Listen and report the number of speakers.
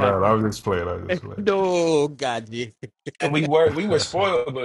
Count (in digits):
3